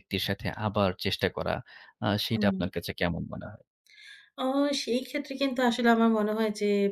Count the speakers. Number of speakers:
2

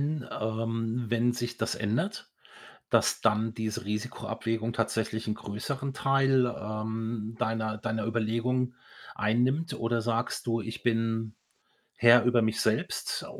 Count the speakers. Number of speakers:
1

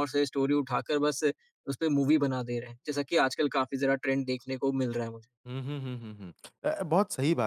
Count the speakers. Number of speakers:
2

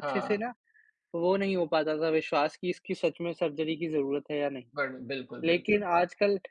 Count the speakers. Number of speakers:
2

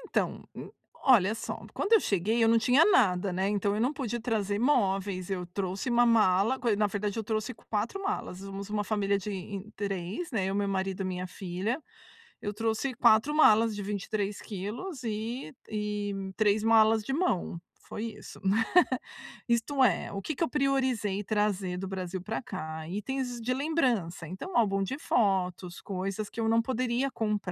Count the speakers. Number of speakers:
1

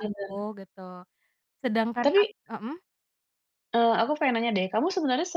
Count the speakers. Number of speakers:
2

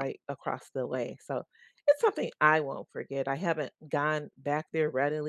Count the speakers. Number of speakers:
1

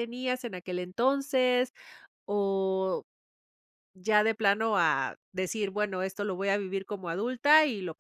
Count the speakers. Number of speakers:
1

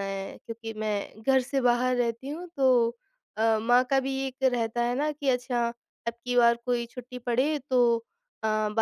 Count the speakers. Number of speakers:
1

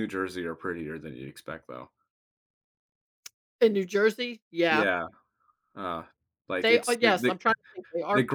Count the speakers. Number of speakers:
2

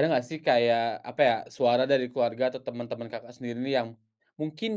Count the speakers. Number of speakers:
1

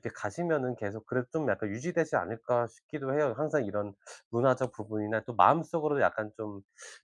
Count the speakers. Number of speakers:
1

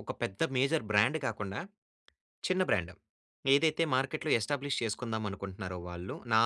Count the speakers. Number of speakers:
1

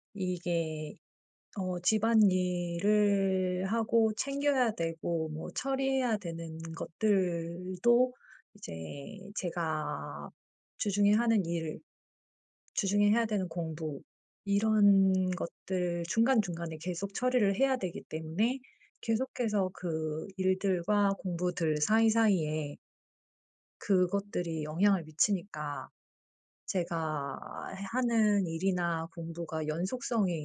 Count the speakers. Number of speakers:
1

